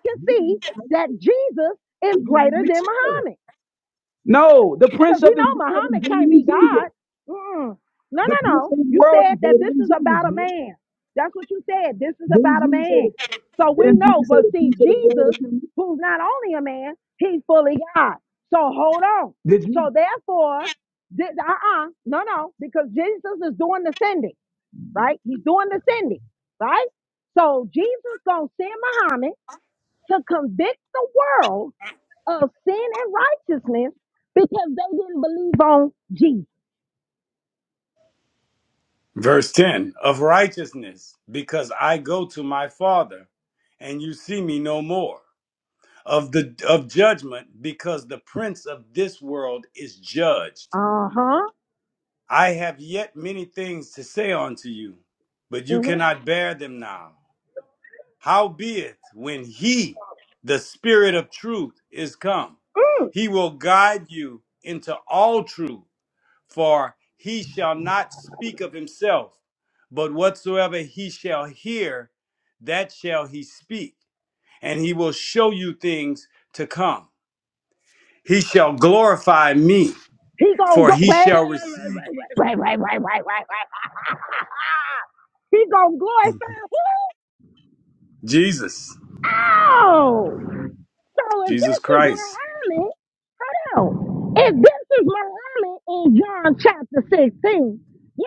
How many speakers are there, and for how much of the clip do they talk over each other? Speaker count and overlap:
3, about 10%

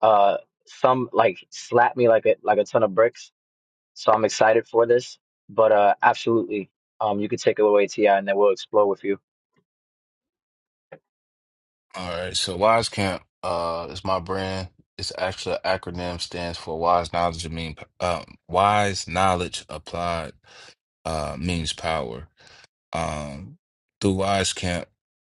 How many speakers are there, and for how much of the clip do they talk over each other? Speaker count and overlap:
2, no overlap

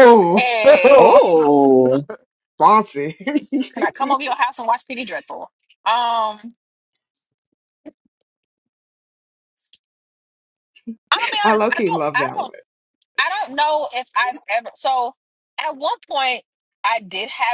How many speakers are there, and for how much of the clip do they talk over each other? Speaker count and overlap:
3, about 10%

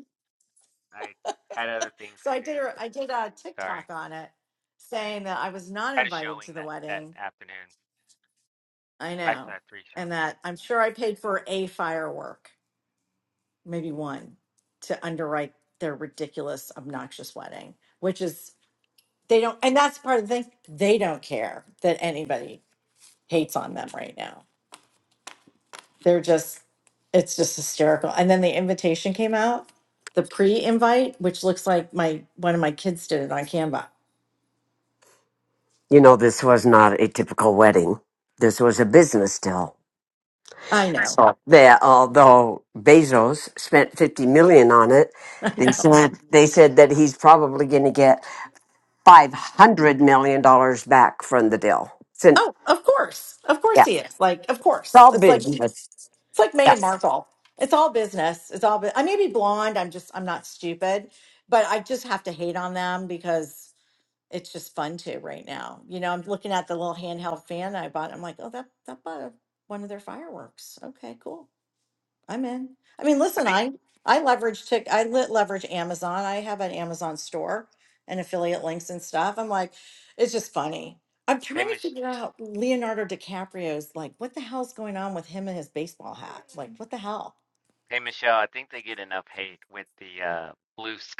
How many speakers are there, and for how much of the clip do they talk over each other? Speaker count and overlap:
3, about 4%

